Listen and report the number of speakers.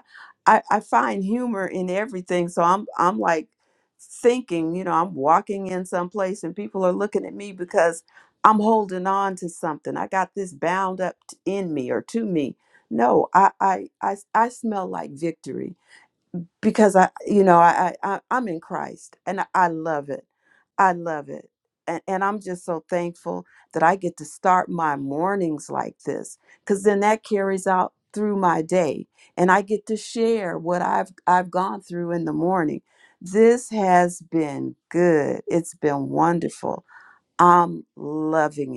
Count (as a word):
one